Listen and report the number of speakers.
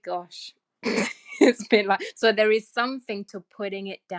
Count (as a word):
one